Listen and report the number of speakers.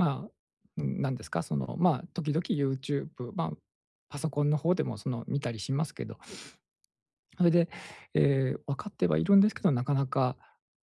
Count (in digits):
1